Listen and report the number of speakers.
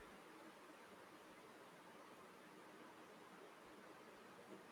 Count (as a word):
zero